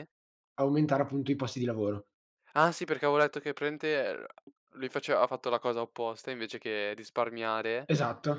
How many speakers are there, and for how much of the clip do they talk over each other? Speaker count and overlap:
two, no overlap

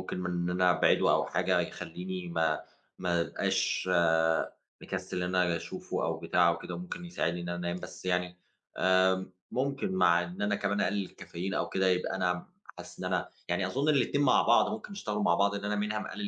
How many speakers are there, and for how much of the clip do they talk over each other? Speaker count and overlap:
one, no overlap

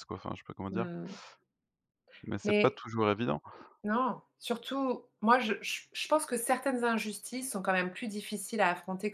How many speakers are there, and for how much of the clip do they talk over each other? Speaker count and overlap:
two, about 5%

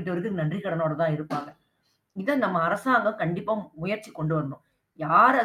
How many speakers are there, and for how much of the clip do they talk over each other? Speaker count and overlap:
one, no overlap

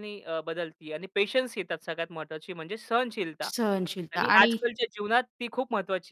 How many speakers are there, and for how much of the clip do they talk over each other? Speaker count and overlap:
two, about 9%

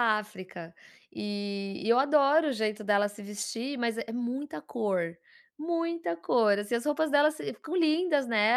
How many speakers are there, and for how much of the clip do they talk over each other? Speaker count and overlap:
one, no overlap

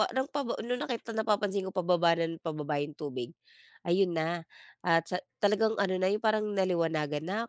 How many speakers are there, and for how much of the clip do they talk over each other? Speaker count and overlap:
one, no overlap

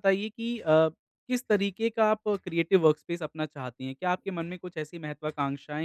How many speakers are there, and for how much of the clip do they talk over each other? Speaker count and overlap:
one, no overlap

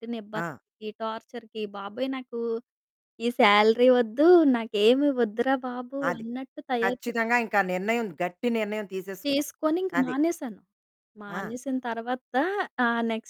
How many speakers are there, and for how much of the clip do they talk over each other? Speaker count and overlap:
two, about 8%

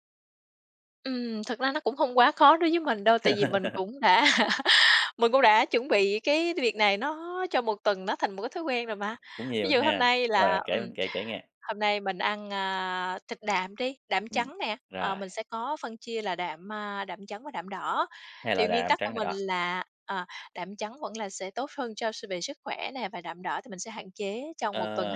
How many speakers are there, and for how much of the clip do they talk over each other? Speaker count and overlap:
two, about 12%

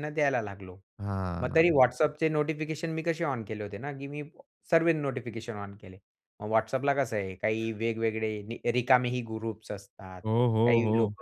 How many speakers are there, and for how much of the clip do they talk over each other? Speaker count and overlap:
two, about 6%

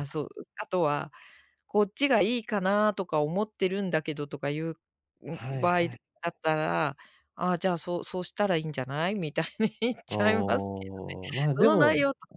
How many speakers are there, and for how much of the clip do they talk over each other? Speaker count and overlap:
two, about 13%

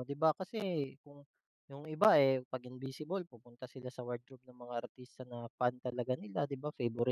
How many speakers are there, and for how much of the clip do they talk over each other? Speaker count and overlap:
one, no overlap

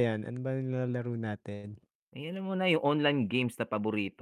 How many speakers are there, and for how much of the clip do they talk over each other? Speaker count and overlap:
two, no overlap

